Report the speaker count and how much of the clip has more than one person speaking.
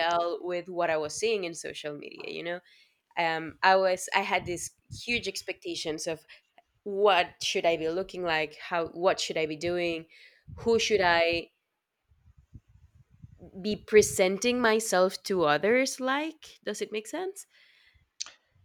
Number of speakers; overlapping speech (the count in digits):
1, no overlap